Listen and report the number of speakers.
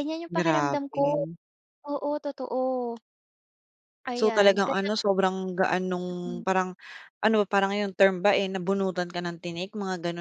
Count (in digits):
2